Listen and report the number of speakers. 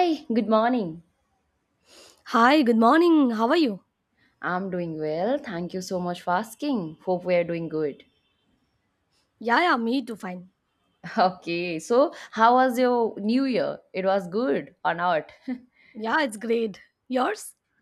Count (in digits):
2